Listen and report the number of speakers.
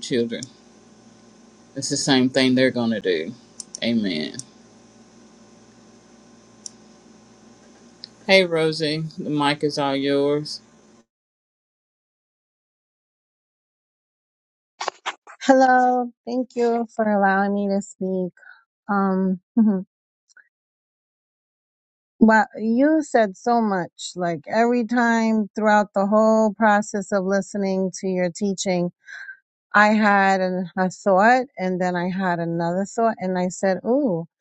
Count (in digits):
2